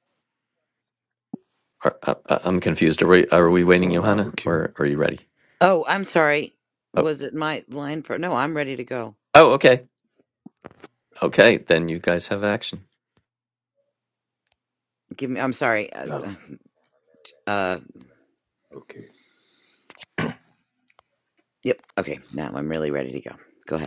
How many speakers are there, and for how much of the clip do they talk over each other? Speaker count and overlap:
3, about 5%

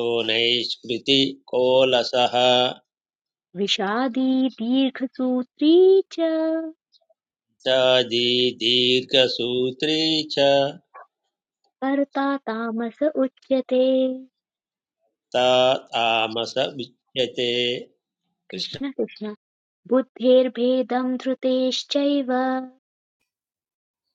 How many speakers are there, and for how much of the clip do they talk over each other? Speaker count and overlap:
2, no overlap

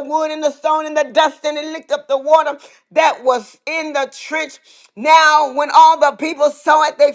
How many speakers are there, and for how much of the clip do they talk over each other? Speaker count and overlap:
1, no overlap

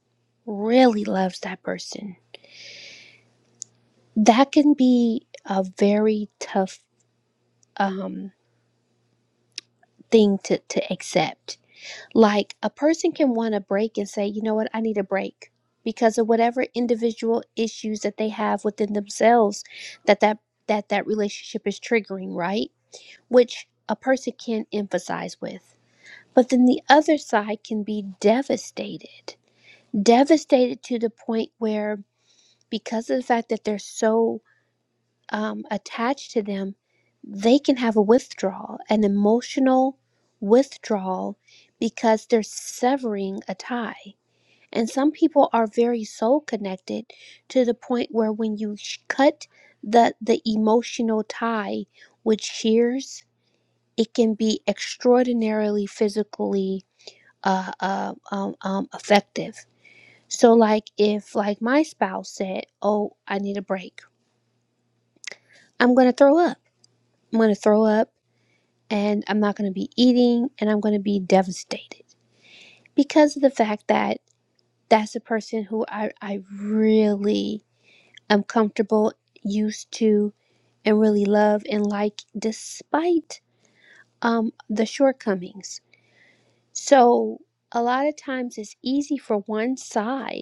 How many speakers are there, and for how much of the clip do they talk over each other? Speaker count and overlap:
1, no overlap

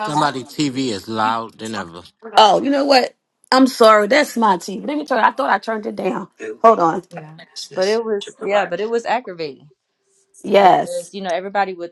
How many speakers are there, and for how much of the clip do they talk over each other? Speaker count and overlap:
3, about 5%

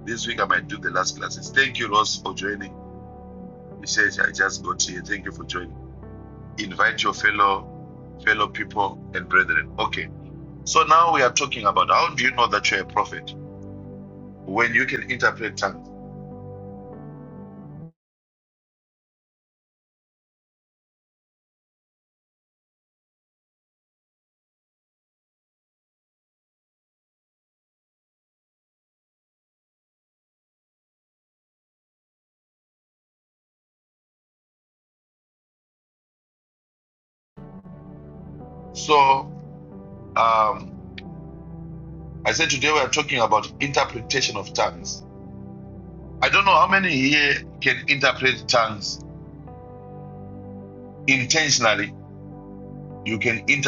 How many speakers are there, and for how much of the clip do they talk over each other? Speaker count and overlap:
1, no overlap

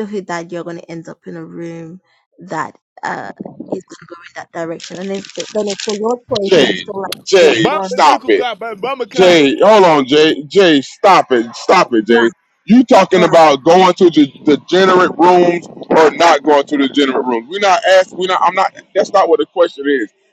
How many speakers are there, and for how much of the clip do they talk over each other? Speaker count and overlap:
3, about 10%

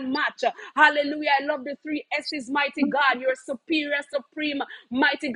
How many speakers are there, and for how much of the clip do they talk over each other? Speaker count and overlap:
1, no overlap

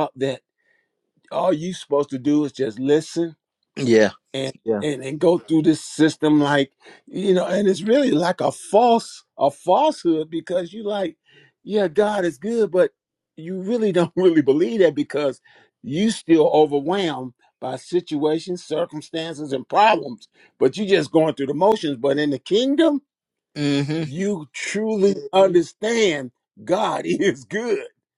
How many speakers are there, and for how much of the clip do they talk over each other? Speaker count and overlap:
2, about 1%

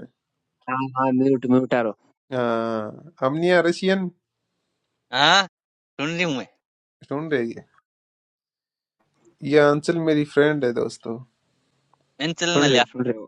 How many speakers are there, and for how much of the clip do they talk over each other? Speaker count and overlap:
3, about 2%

